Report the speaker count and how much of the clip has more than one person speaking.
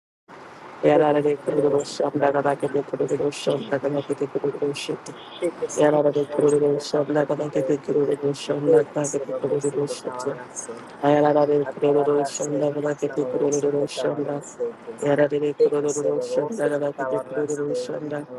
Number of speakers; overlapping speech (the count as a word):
two, about 53%